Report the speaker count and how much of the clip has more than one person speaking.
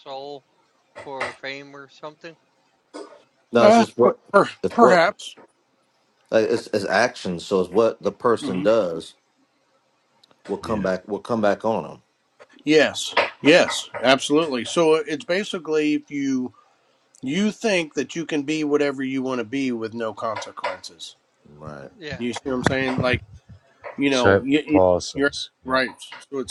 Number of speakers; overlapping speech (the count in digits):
4, about 8%